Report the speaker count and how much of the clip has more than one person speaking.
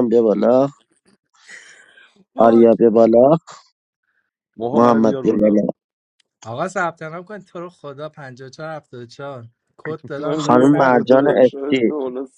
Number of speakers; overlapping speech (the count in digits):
3, about 24%